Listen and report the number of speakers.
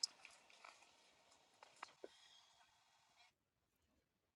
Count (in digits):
0